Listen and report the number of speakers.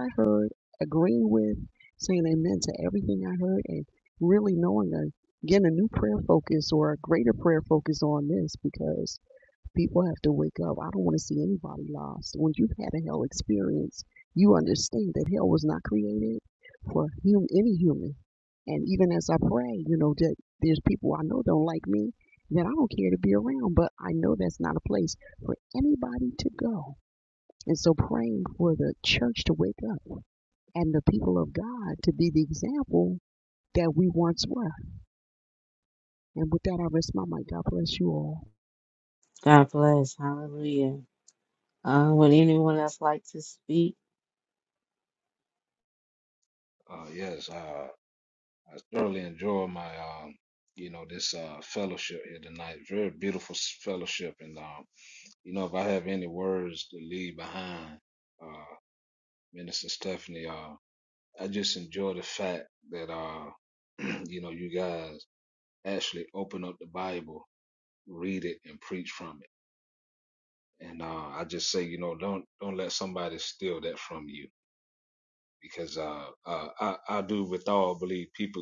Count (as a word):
three